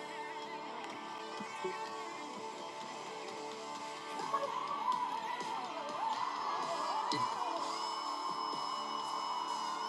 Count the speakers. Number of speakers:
zero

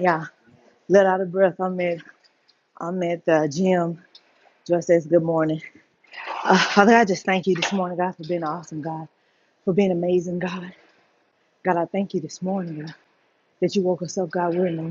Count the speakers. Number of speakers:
one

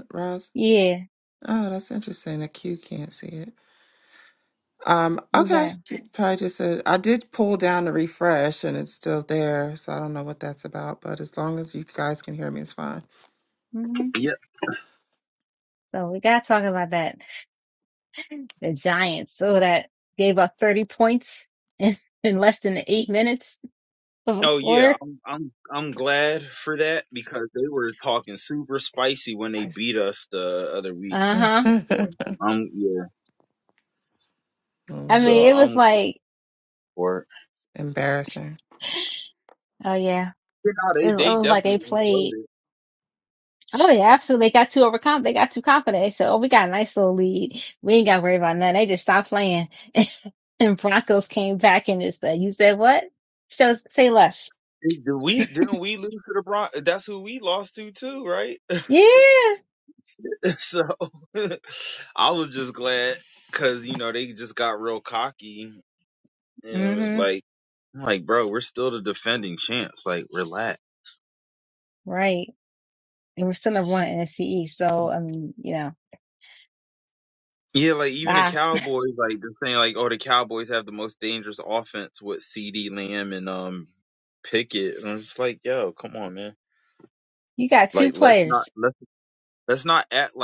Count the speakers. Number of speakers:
three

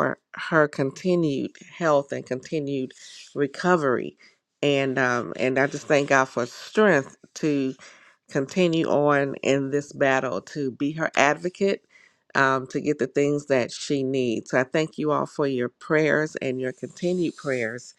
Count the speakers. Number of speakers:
one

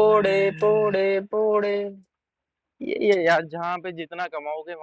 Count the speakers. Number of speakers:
two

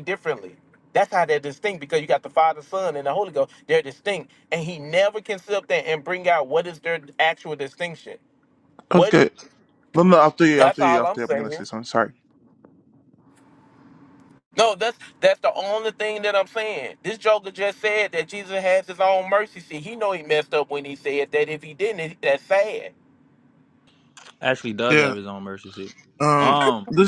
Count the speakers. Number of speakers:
three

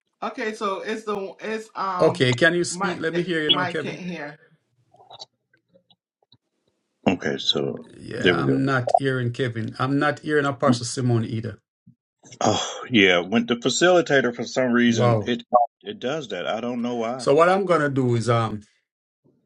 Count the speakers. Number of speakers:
three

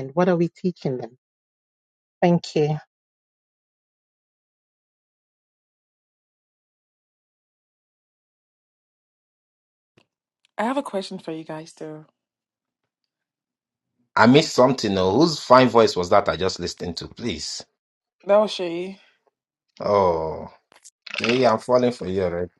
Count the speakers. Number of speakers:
three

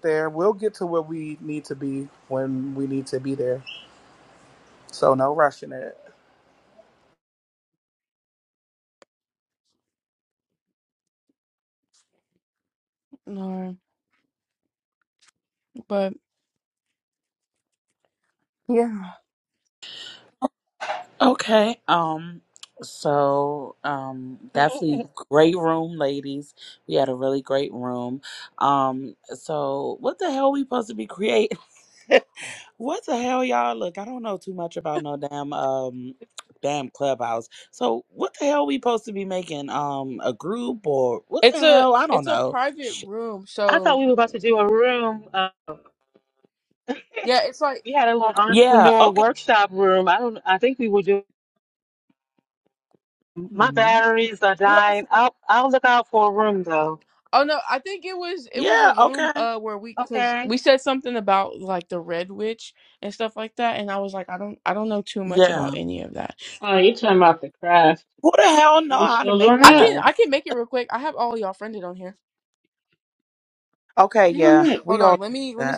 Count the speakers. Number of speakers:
five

